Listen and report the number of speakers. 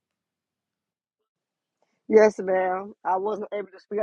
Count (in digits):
1